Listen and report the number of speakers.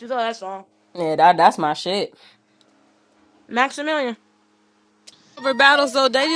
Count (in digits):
3